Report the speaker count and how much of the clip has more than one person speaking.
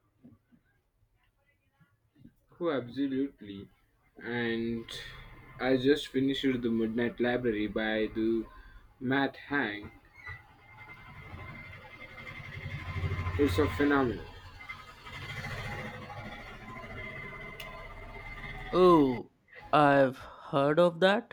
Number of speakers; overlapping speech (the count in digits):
2, no overlap